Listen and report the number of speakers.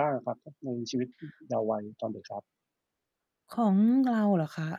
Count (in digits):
2